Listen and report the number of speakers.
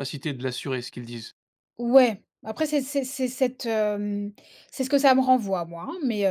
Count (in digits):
2